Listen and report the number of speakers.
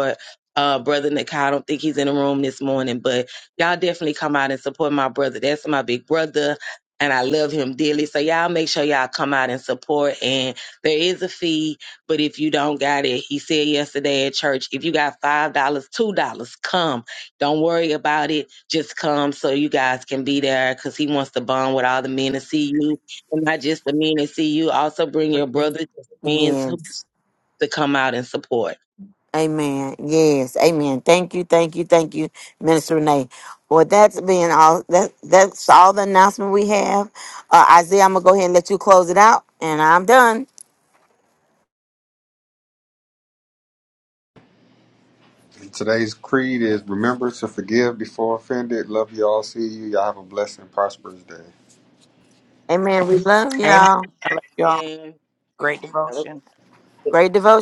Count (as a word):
four